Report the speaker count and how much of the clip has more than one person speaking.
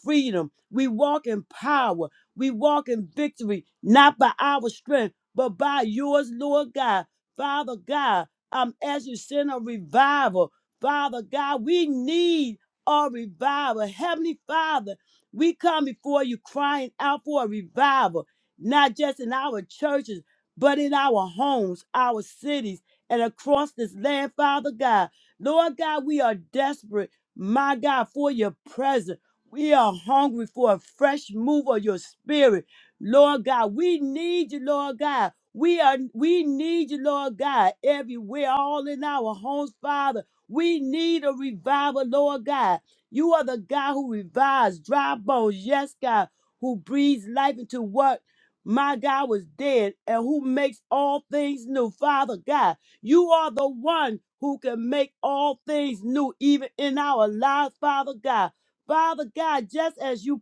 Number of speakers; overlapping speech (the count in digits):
1, no overlap